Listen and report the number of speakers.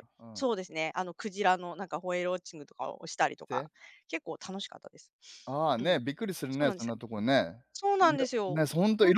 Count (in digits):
2